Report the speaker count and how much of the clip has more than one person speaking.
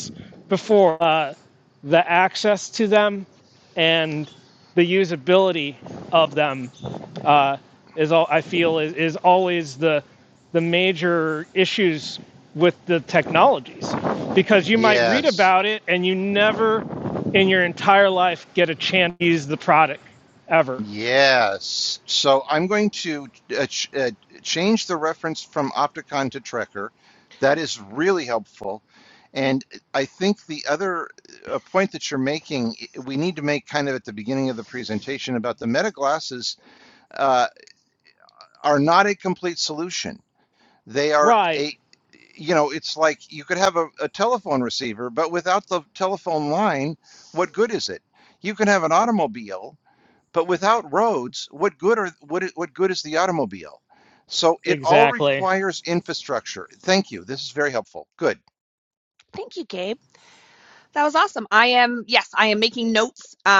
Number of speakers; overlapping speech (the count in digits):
3, about 3%